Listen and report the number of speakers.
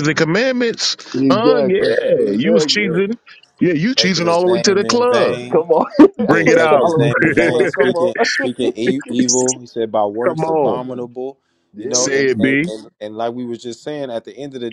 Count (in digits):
3